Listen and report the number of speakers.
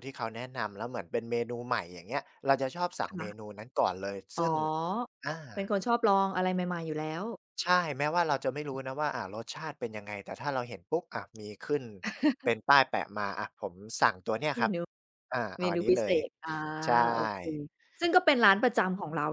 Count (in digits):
2